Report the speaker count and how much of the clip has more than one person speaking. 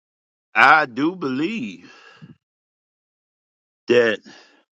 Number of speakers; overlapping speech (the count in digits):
1, no overlap